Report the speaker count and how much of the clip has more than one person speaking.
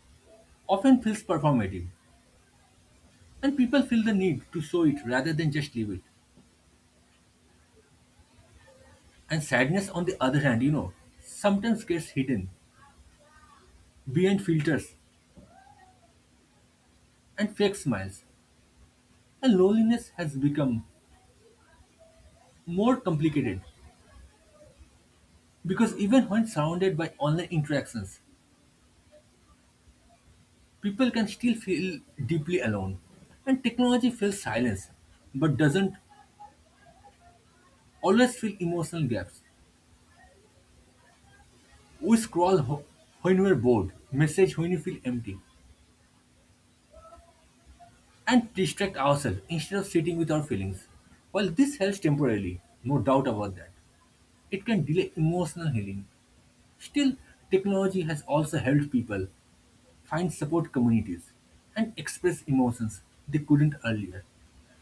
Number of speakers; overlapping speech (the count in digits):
1, no overlap